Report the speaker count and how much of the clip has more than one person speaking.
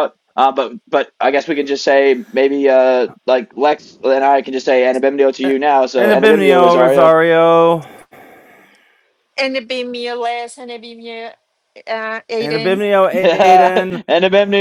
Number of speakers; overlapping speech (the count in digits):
3, about 15%